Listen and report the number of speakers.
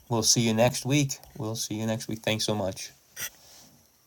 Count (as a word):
one